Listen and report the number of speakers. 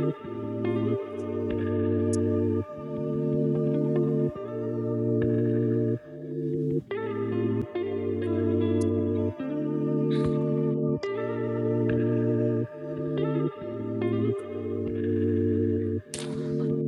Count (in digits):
0